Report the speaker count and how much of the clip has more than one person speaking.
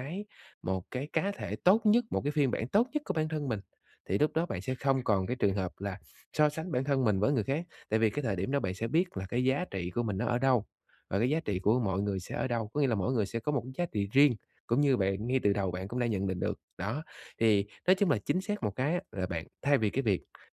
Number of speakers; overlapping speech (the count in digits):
1, no overlap